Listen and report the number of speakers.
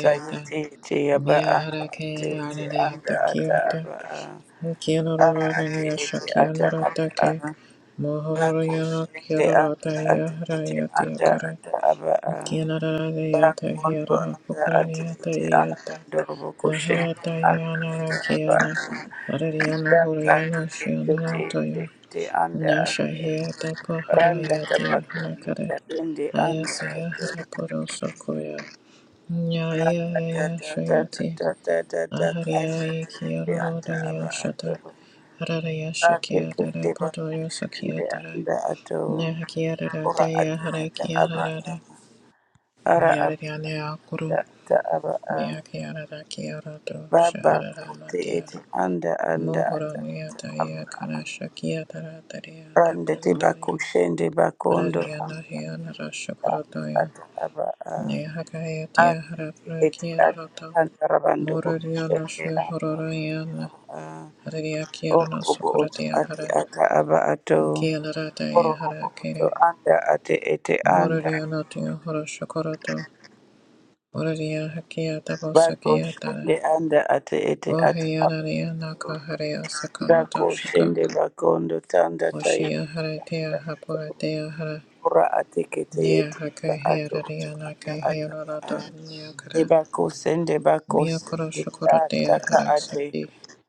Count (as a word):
two